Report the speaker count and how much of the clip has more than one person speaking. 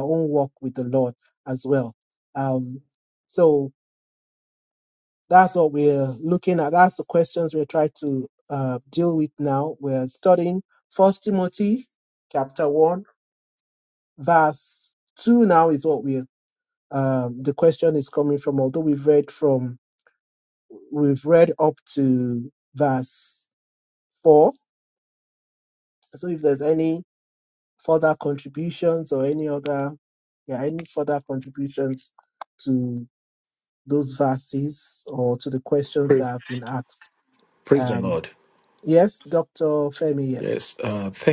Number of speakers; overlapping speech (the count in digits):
2, about 2%